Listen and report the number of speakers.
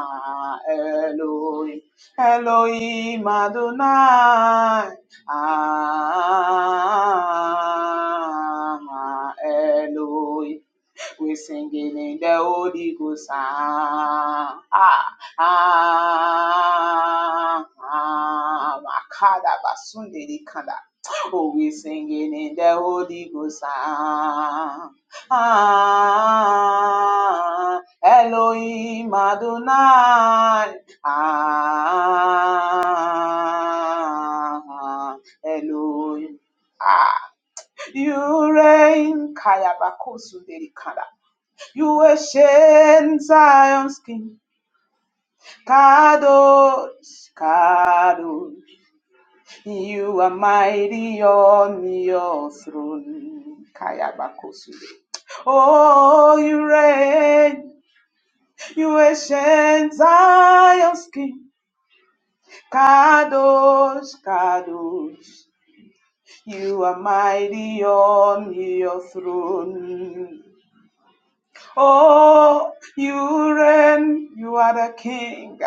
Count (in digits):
1